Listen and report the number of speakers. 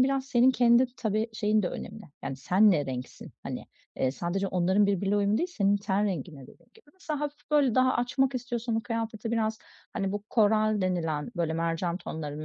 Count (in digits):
1